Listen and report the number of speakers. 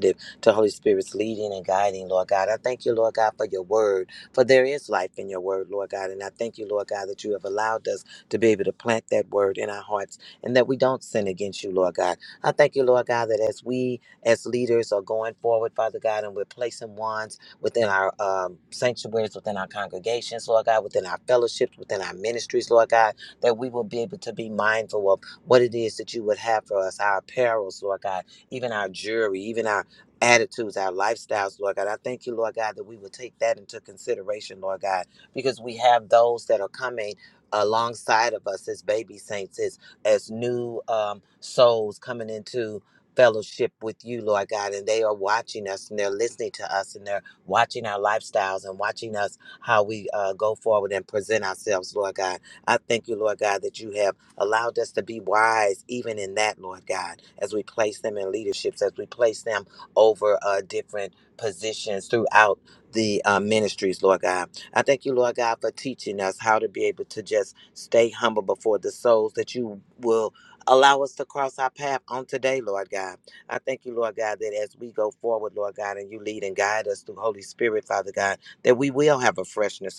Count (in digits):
1